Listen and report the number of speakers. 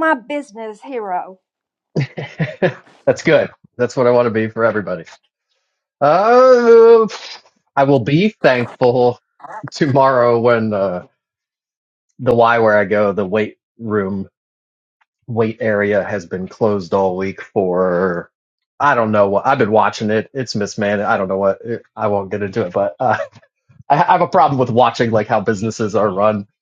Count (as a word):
two